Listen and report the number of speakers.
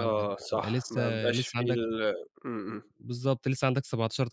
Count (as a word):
two